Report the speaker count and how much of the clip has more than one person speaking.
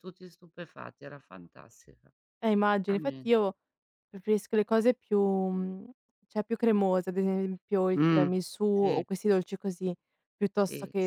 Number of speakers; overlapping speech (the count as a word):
two, about 9%